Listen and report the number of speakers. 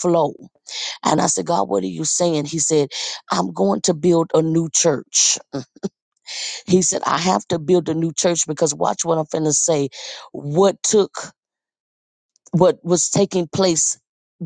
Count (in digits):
1